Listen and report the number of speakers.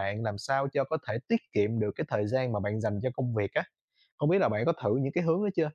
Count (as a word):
one